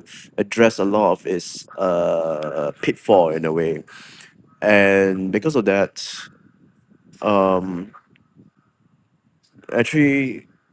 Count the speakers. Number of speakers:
1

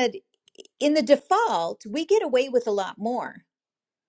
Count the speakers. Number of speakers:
1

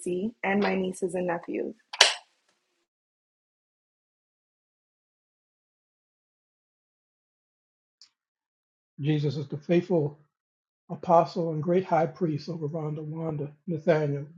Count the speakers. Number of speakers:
2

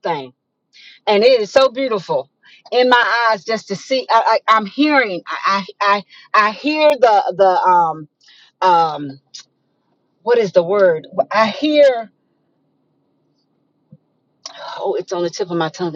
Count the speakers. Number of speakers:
1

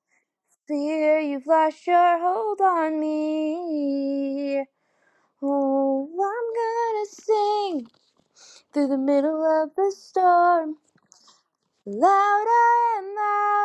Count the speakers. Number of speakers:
1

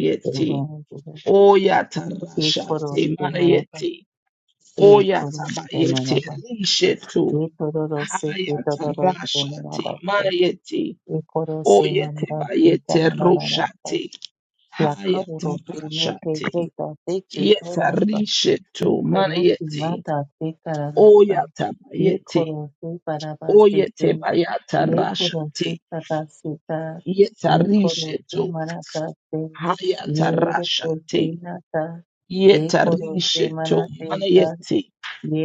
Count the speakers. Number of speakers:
2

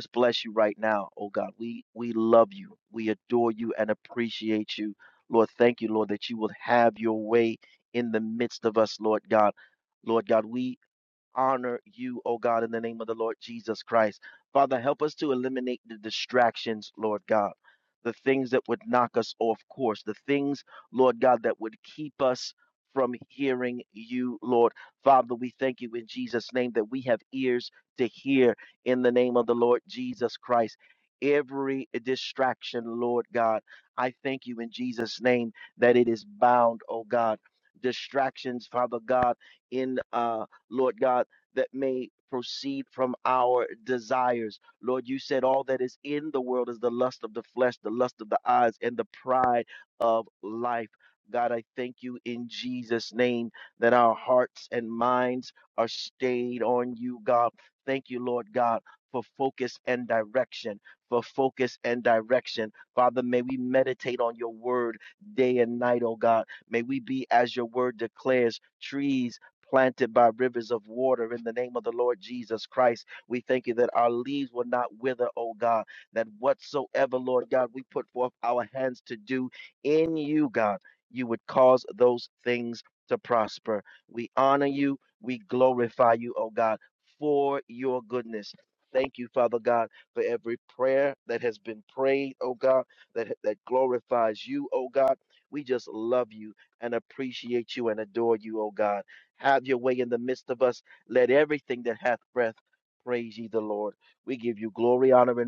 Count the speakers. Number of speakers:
1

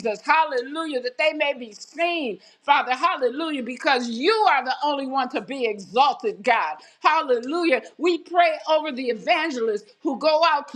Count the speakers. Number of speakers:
1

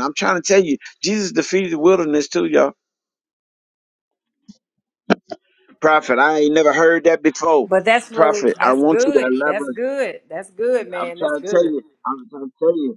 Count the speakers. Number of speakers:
2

